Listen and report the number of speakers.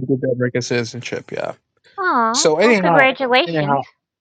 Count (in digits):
2